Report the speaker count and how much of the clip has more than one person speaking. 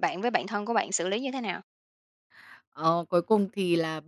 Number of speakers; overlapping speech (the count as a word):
two, no overlap